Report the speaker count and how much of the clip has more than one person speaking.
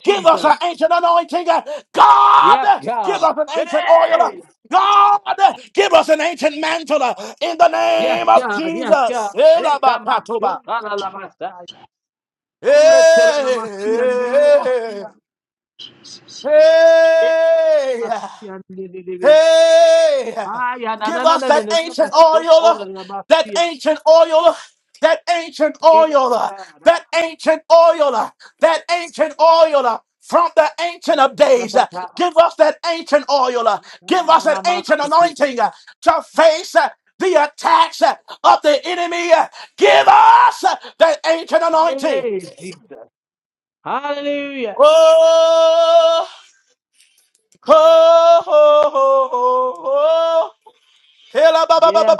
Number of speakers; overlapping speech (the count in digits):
2, about 21%